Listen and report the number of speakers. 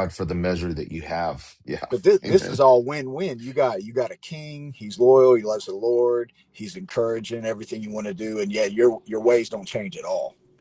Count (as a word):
two